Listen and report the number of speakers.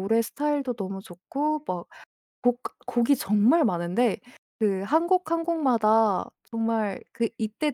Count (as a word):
one